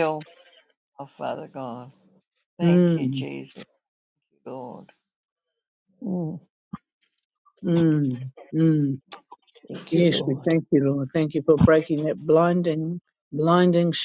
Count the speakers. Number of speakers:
3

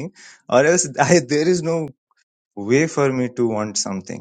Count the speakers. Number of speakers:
1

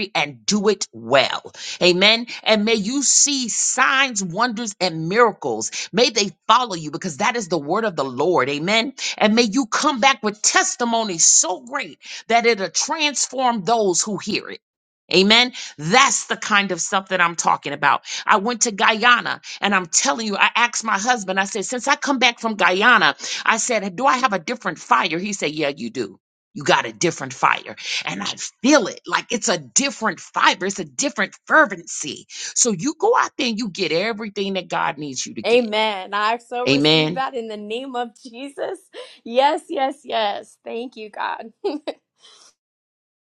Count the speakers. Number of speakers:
2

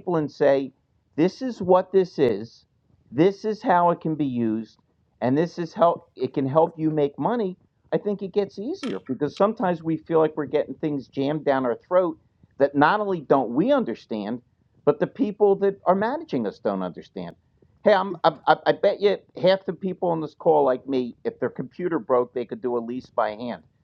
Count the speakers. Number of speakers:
1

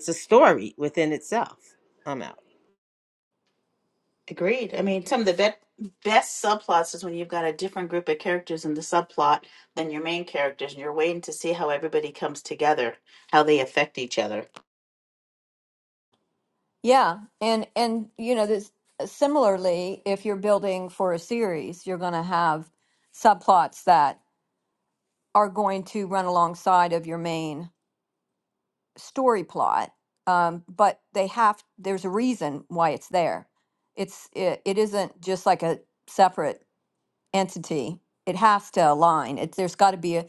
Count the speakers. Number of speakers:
3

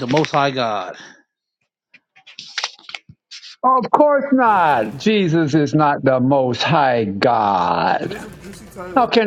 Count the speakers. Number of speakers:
3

